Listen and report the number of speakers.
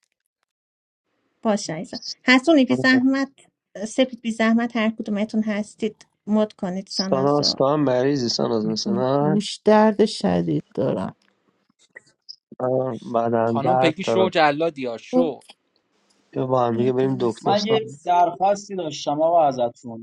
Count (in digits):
5